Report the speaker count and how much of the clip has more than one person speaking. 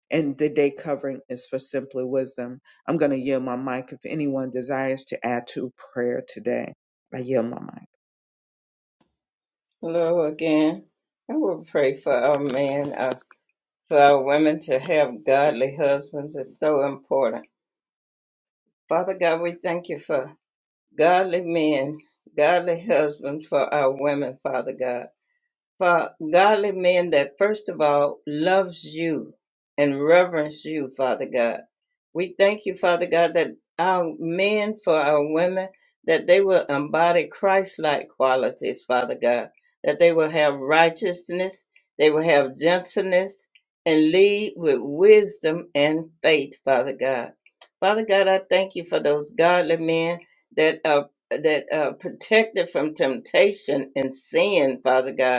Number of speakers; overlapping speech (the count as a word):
two, no overlap